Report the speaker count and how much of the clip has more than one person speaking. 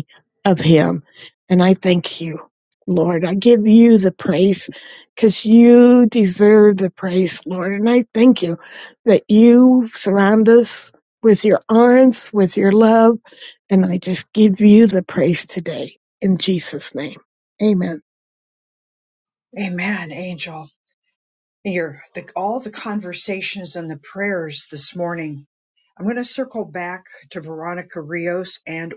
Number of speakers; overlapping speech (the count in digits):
2, no overlap